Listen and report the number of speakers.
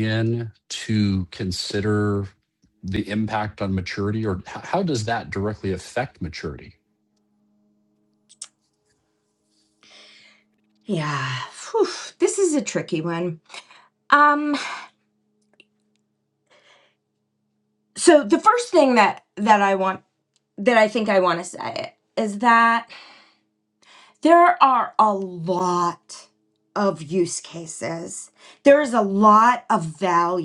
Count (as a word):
two